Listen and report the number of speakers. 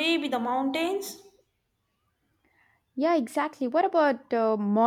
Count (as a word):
two